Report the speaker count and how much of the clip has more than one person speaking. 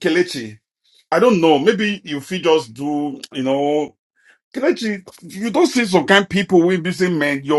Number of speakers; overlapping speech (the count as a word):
one, no overlap